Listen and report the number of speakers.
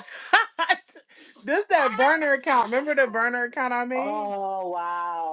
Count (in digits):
2